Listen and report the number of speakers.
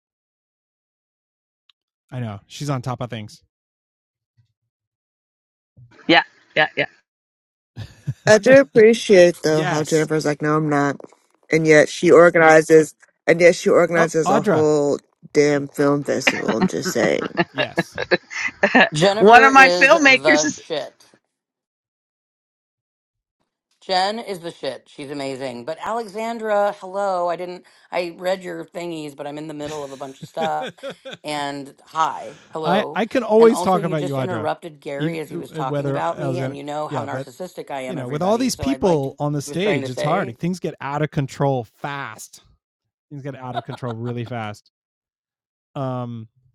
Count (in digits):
4